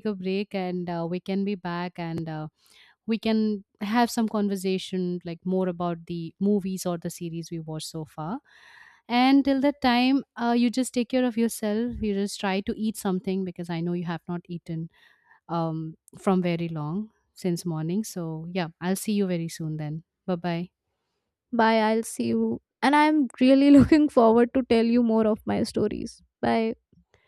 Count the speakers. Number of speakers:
two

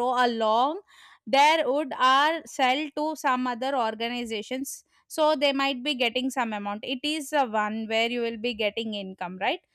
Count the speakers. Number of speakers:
one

